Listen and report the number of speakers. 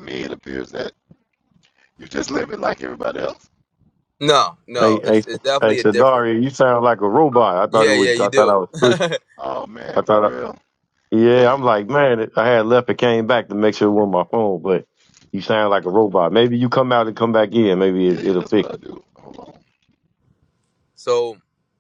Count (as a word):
three